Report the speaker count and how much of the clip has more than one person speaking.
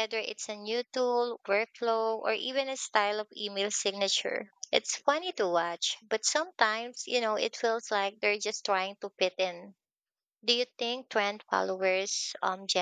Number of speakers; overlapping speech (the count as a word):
one, no overlap